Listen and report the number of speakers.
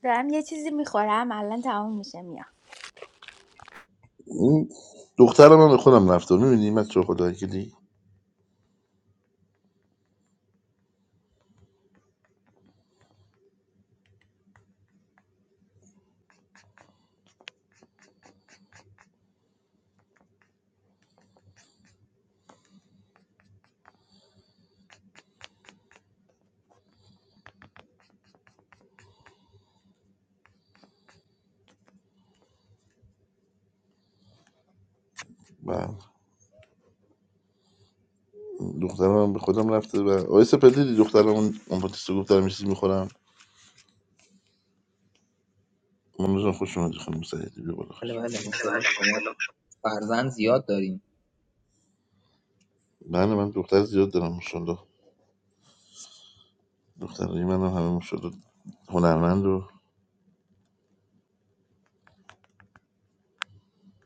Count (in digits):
3